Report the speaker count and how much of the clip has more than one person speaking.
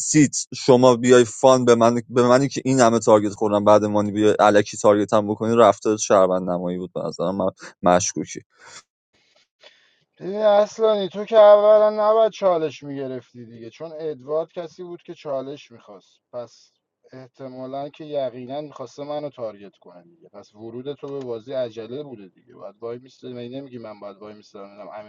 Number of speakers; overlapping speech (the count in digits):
2, no overlap